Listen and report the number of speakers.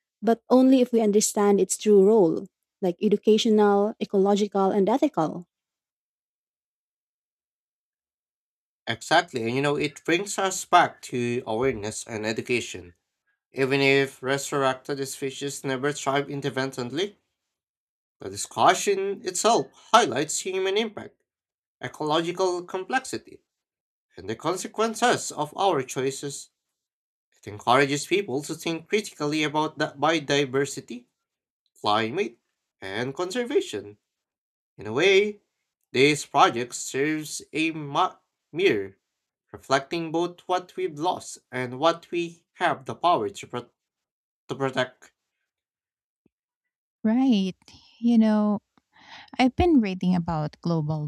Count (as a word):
three